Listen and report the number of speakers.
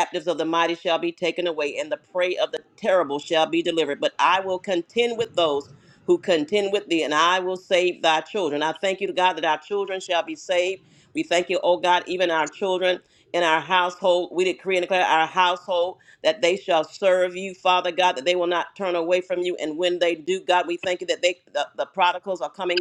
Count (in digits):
1